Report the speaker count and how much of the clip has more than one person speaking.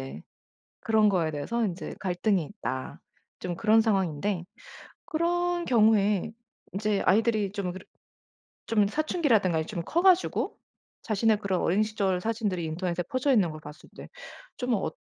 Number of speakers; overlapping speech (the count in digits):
1, no overlap